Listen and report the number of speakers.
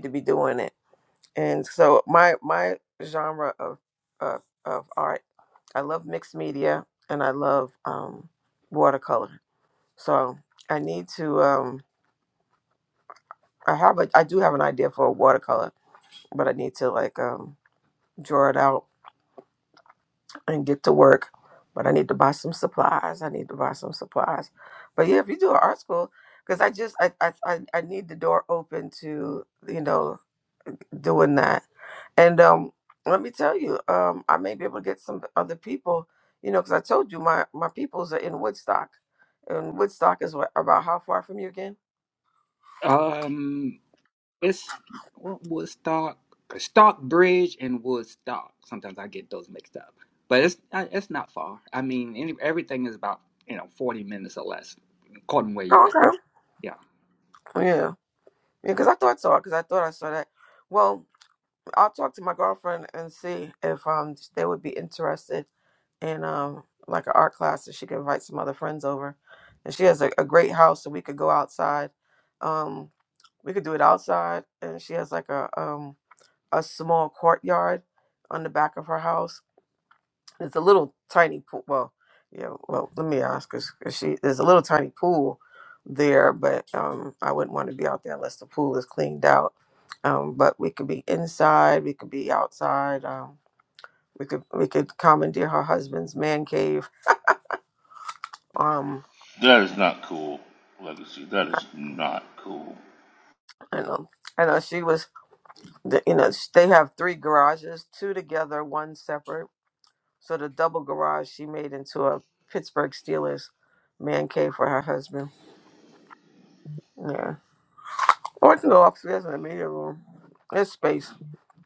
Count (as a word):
three